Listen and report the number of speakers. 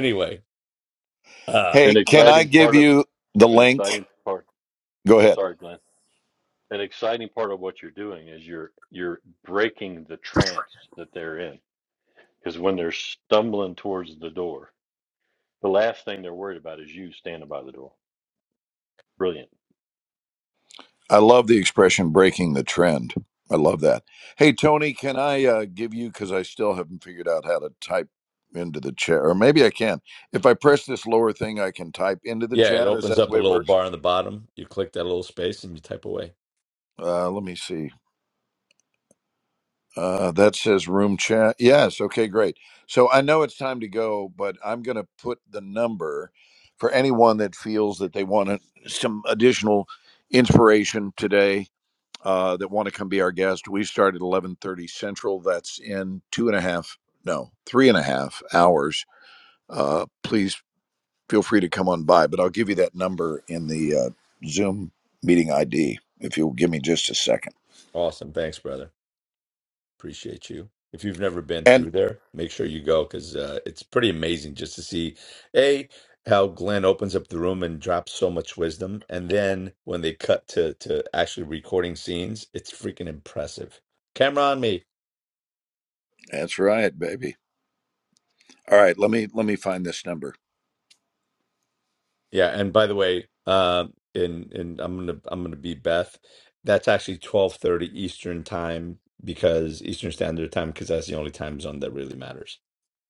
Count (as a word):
three